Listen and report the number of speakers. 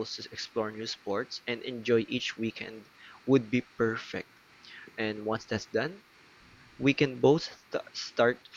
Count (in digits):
1